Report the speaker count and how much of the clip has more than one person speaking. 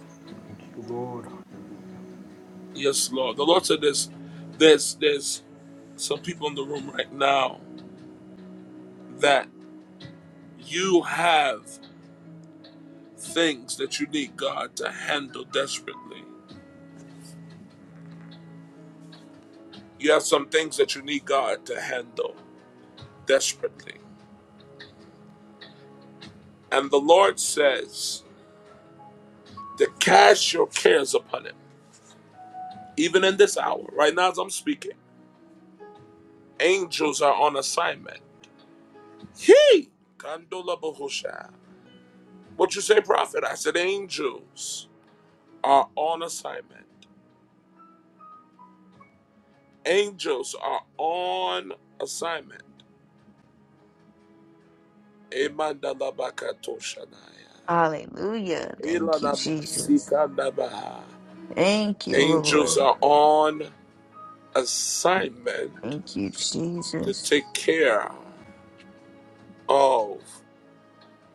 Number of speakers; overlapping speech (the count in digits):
3, about 3%